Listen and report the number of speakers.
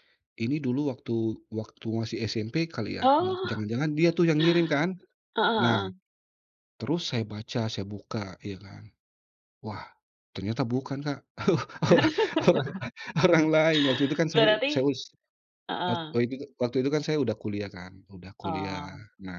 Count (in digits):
2